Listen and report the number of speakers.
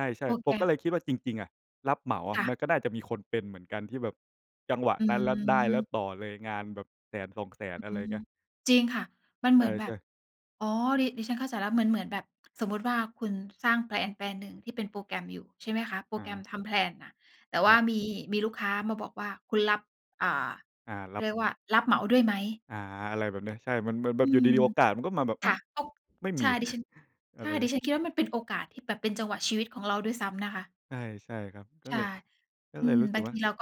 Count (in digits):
2